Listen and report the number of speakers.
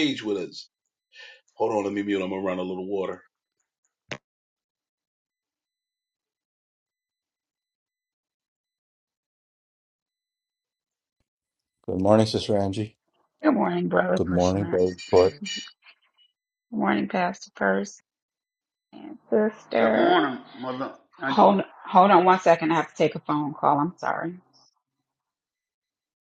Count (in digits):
4